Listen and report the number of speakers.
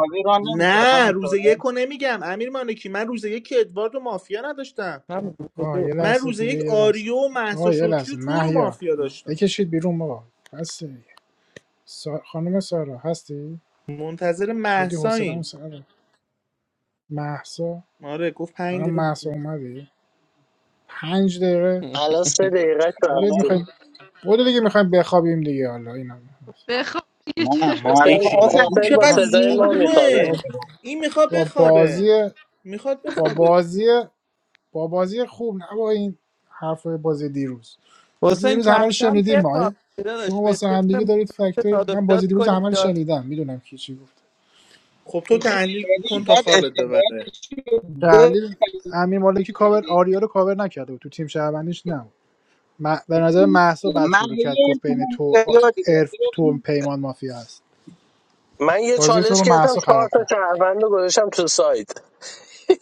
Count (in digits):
6